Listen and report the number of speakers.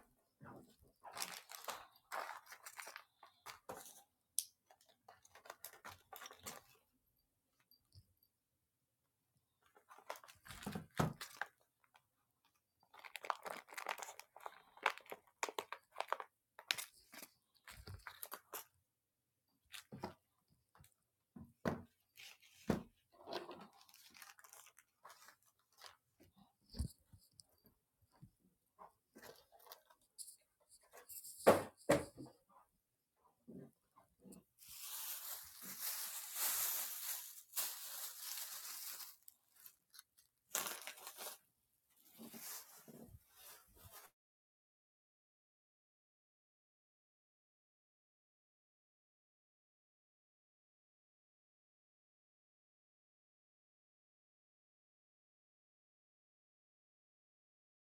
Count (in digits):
0